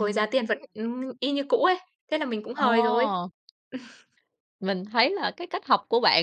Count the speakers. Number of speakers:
2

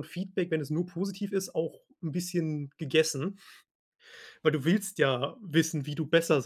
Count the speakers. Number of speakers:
1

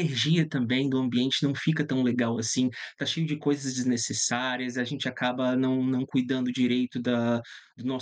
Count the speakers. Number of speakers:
1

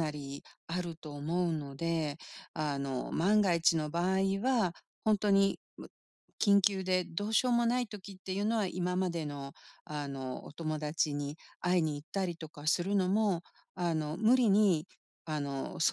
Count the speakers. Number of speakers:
1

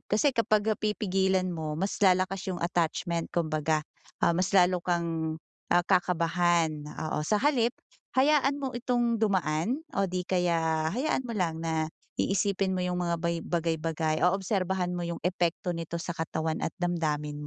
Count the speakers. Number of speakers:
1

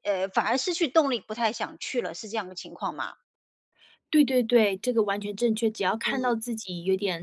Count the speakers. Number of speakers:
2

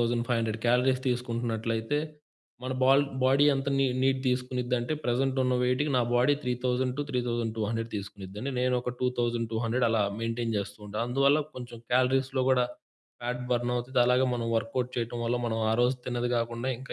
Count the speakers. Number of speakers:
1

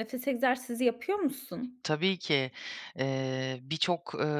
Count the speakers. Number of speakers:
2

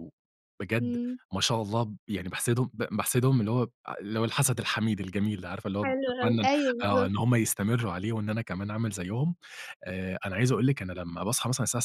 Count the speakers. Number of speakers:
2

